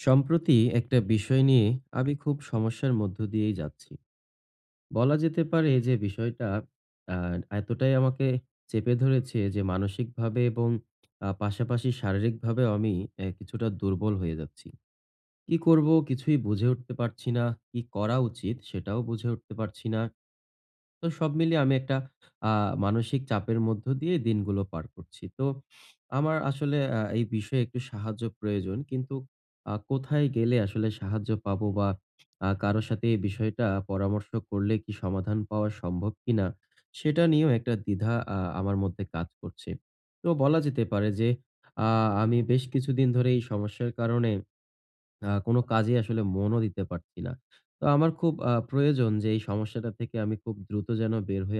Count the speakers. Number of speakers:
1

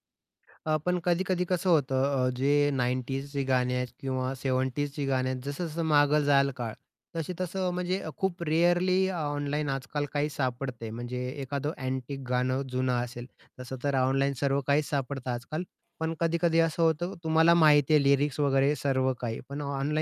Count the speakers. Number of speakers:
1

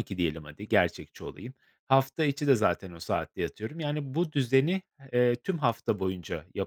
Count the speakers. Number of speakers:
1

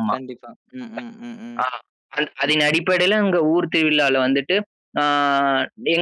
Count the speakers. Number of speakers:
2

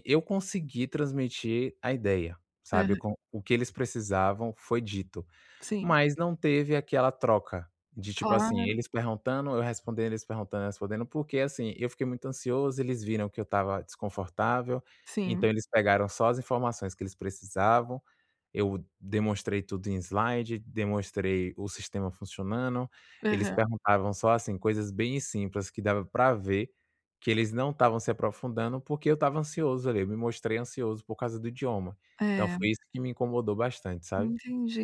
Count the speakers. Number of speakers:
2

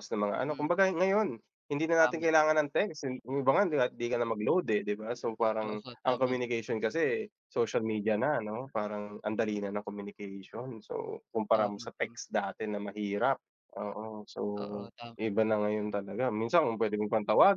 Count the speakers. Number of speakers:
2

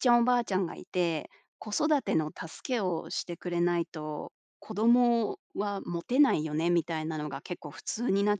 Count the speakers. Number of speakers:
1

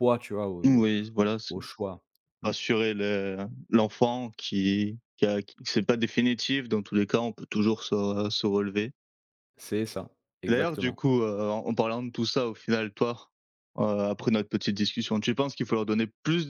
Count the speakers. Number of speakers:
2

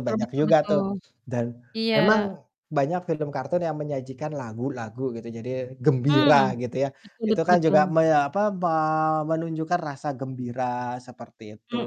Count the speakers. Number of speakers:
2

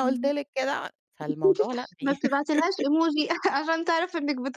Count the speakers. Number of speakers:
2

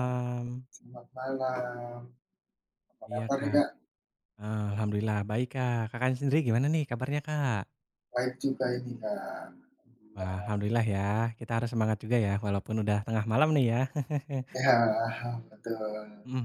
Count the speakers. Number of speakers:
2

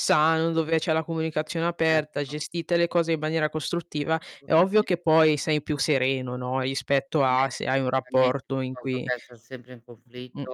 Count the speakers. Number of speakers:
2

